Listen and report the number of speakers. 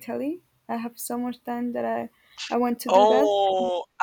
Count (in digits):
2